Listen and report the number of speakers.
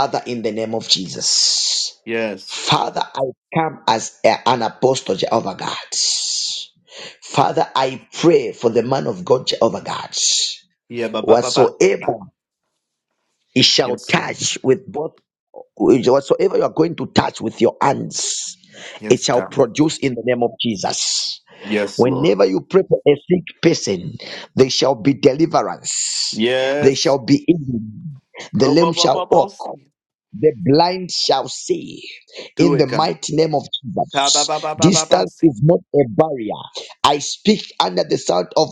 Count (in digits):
2